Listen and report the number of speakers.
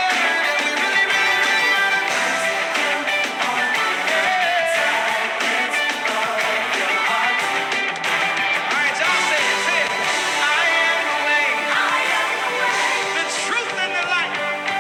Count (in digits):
0